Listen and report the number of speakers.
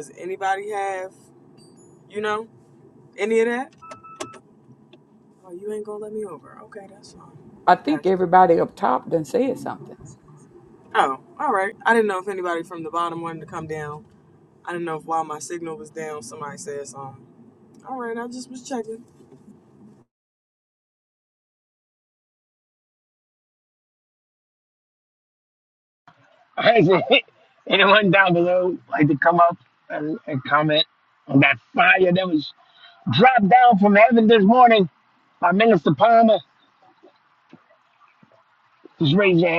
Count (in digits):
3